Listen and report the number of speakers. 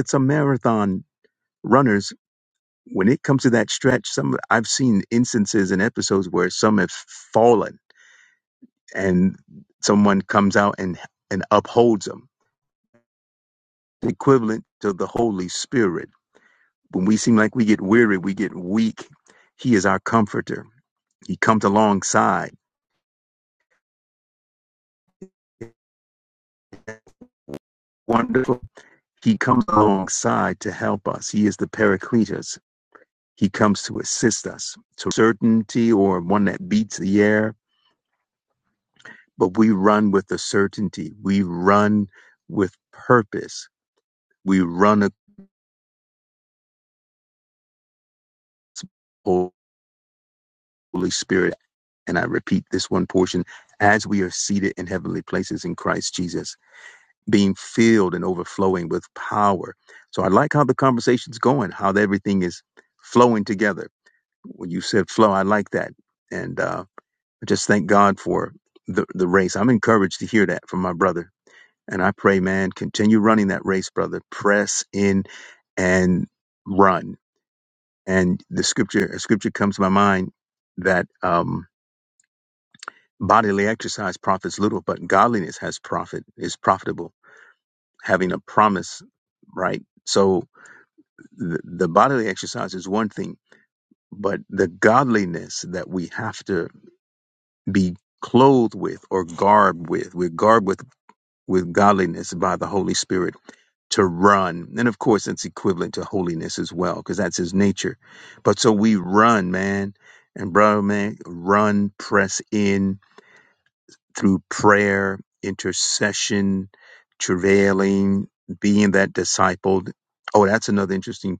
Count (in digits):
1